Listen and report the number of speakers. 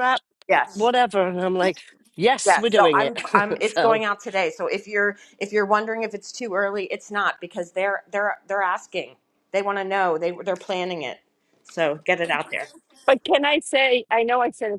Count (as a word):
three